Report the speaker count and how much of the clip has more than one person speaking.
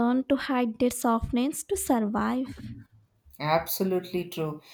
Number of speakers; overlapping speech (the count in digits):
2, no overlap